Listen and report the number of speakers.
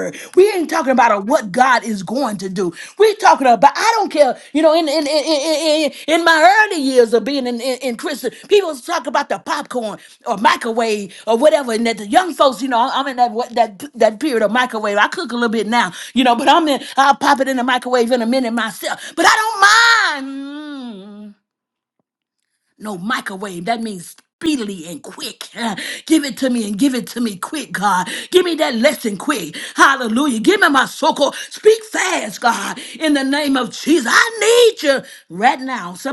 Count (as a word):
one